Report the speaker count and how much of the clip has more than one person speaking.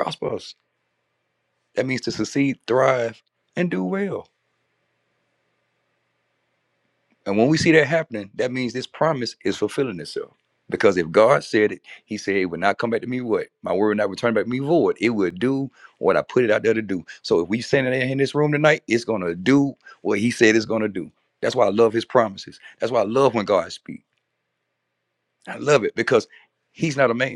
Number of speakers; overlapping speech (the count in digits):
1, no overlap